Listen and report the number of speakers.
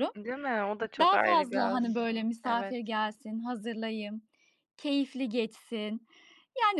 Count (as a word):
two